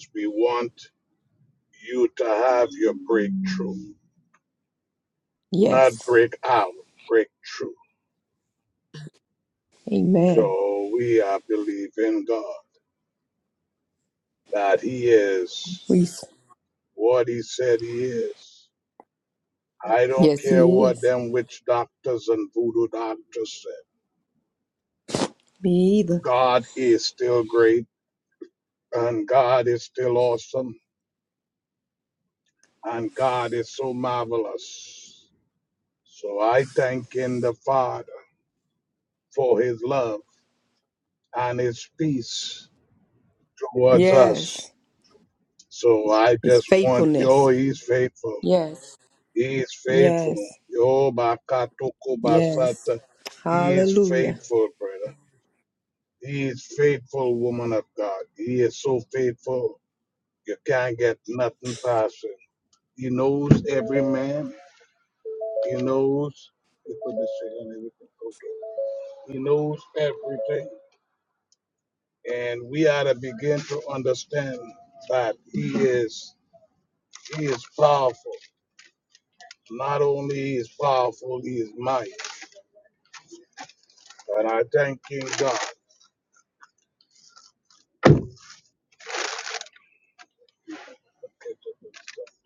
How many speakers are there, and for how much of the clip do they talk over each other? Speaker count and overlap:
2, about 5%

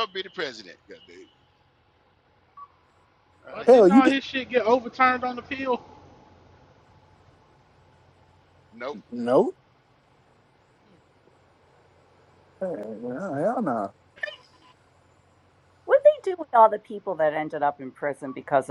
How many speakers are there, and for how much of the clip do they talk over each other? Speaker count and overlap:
4, about 3%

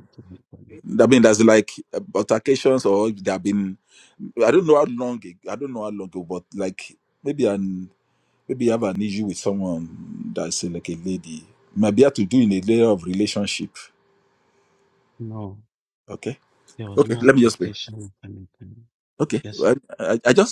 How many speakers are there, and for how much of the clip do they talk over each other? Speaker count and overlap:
2, about 5%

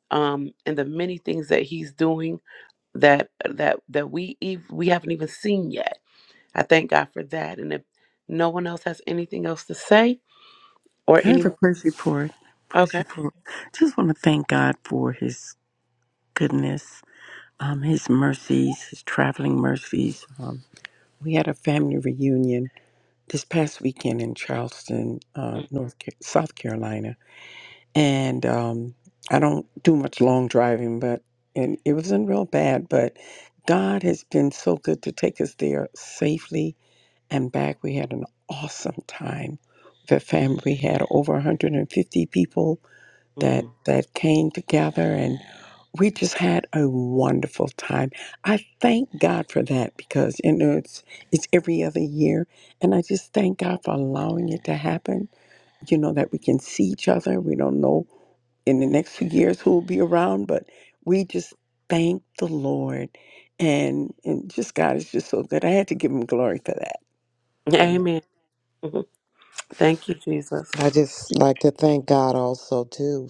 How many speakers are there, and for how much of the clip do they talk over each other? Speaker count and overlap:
3, about 2%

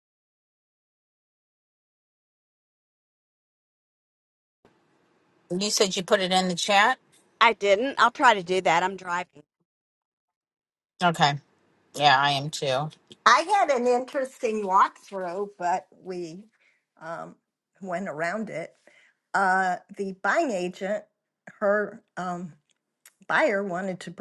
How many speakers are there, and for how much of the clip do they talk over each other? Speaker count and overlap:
3, no overlap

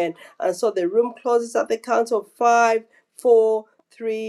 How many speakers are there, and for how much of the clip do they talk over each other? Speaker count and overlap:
1, no overlap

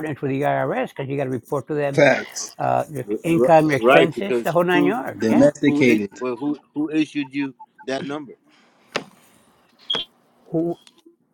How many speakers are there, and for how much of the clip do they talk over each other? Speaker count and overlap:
3, about 26%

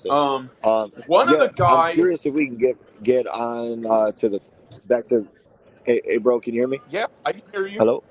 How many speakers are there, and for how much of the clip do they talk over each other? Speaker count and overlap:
2, about 12%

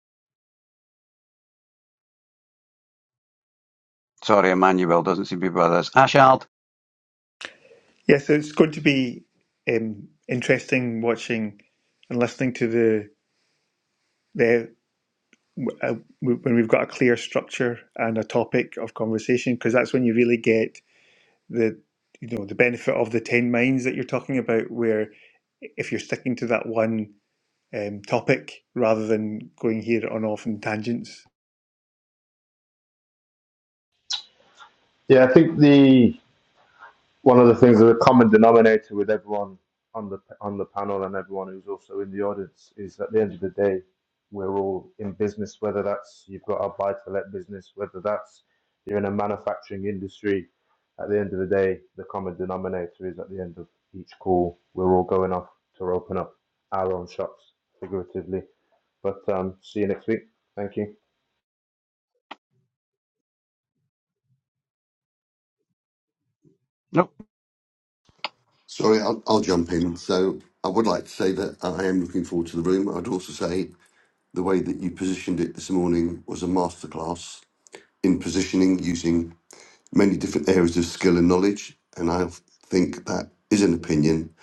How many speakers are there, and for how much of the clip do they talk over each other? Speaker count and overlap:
4, no overlap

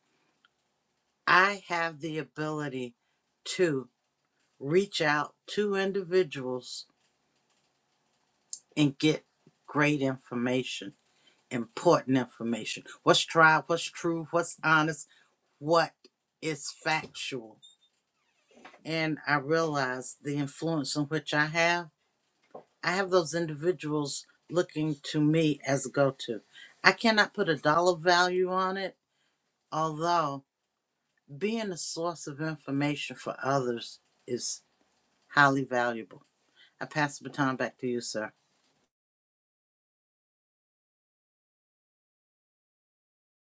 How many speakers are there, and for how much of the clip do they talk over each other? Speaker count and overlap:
1, no overlap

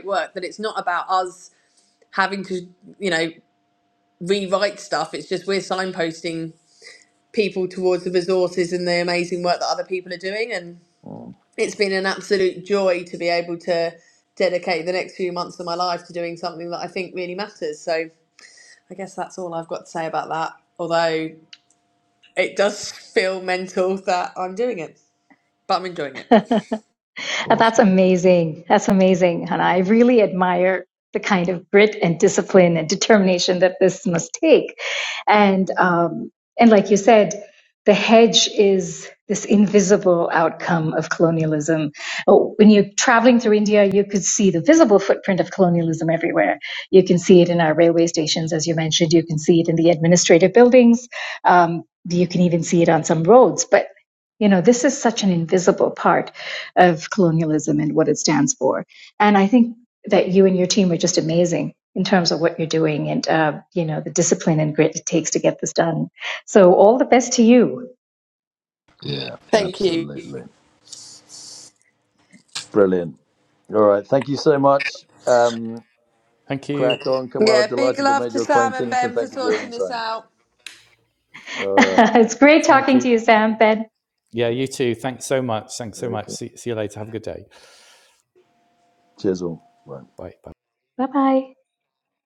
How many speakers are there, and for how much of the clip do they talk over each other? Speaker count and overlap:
4, about 5%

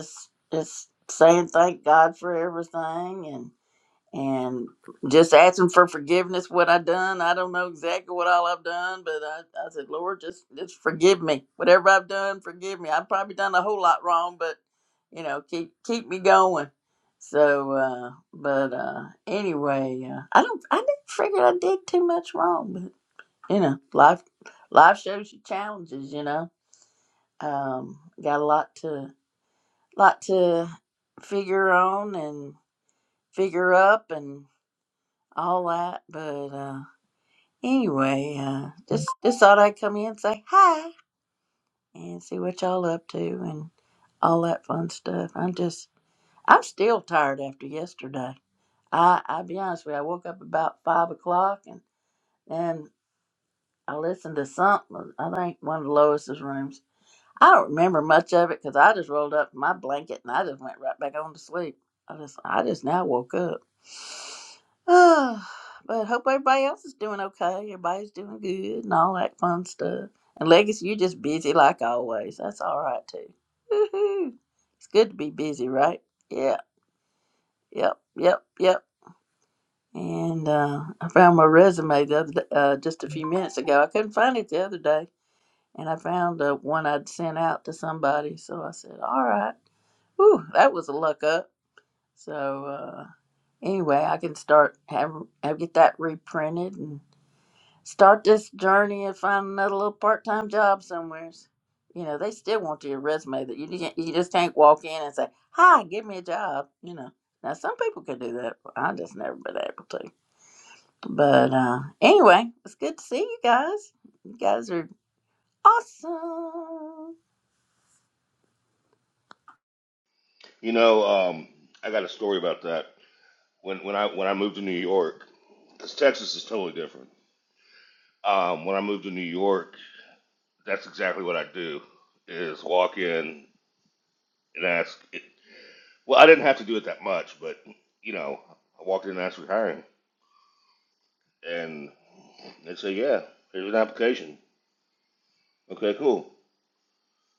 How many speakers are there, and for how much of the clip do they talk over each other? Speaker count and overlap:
2, no overlap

